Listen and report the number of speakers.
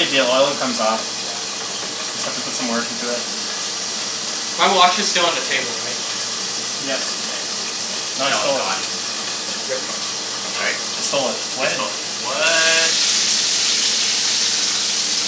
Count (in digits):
3